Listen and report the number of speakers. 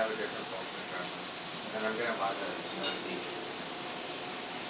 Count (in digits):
1